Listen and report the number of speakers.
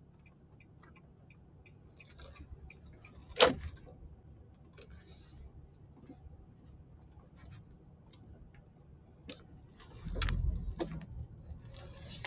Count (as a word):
zero